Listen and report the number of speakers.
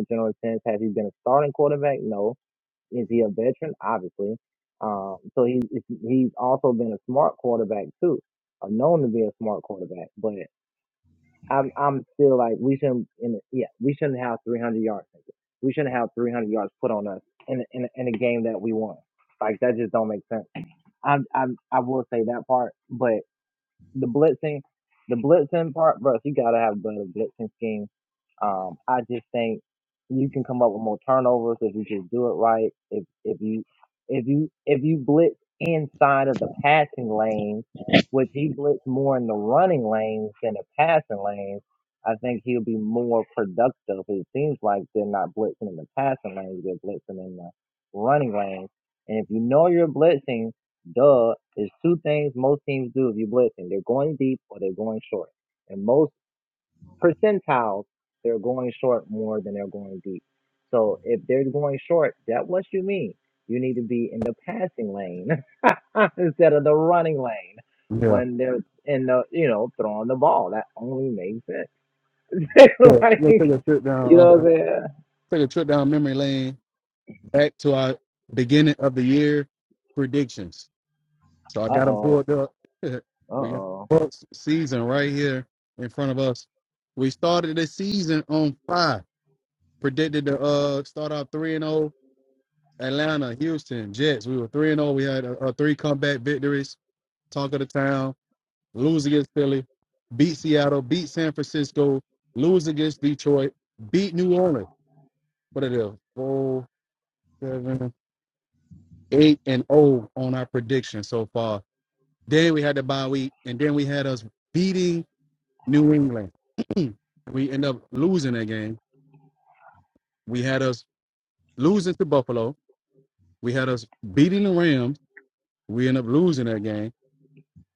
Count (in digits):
2